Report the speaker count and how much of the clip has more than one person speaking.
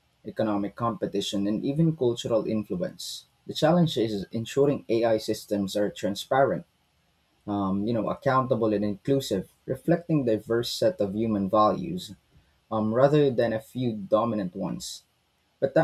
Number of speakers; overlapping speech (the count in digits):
1, no overlap